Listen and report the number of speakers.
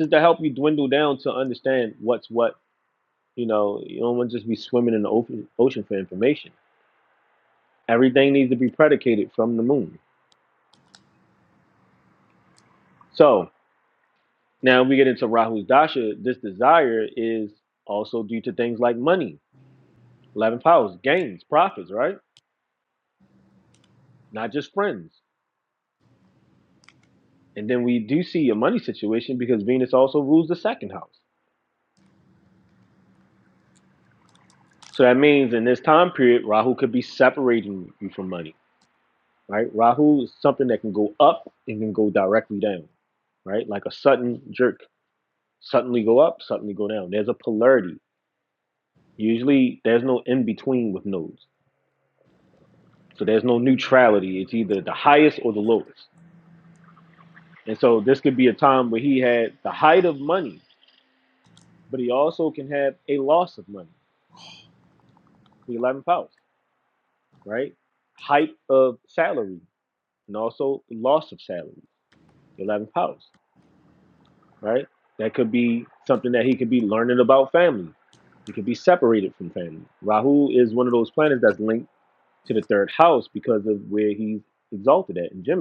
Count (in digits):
1